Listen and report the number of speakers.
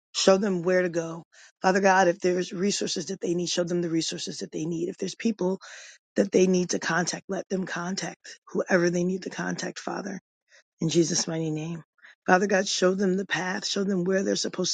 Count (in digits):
1